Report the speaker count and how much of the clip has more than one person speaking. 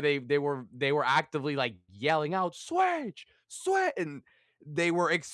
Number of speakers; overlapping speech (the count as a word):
one, no overlap